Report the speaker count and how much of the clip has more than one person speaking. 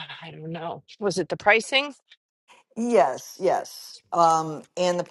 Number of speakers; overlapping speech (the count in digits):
2, no overlap